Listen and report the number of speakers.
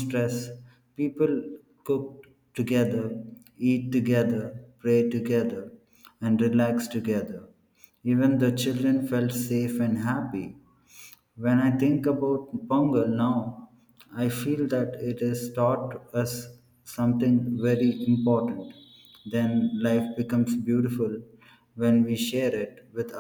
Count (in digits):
1